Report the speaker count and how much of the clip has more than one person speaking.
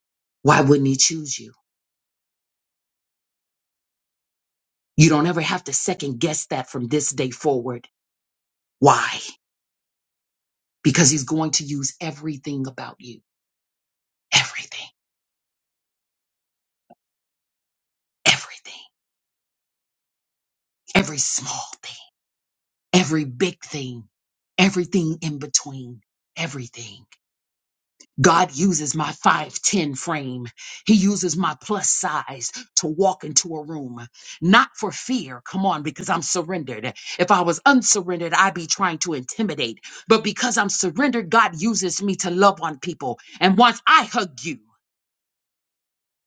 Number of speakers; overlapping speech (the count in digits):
1, no overlap